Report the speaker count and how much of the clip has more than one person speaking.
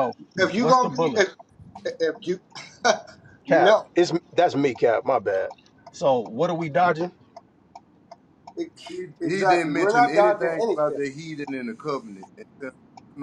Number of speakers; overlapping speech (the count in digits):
3, about 24%